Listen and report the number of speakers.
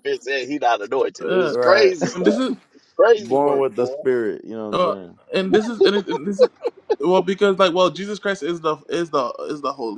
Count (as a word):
three